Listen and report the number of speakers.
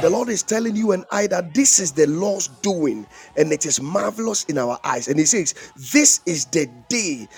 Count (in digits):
1